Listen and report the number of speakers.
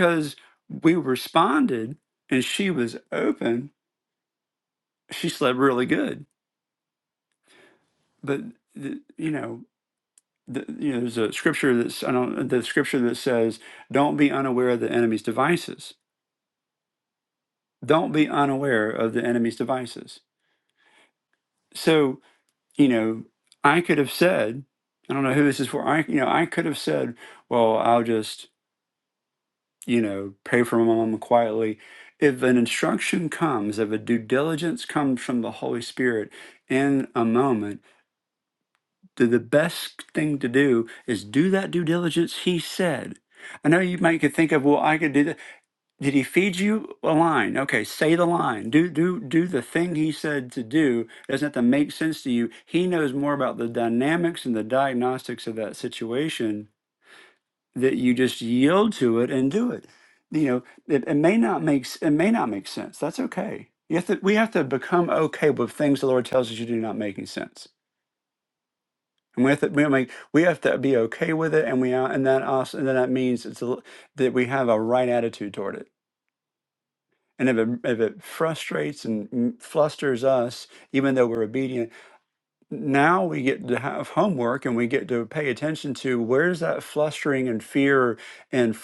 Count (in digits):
1